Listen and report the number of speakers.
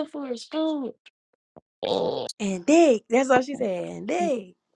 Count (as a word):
two